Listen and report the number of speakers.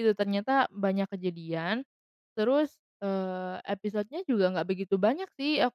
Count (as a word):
one